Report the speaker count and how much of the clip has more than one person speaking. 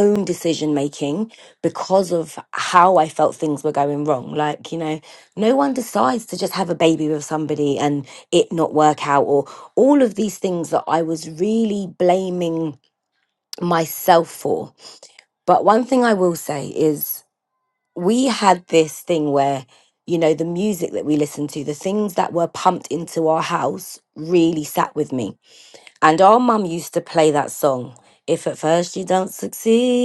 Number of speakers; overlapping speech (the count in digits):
1, no overlap